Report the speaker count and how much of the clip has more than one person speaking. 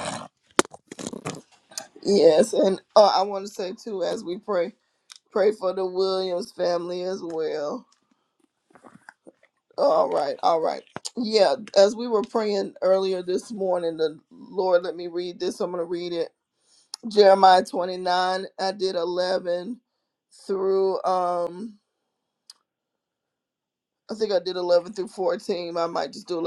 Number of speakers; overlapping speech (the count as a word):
one, no overlap